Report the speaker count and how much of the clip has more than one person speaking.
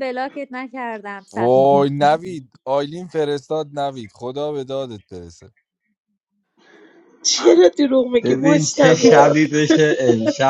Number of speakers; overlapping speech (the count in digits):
4, about 12%